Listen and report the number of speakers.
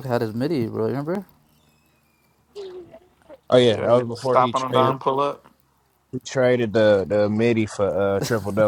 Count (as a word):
three